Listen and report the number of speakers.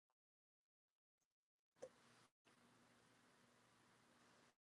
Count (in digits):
0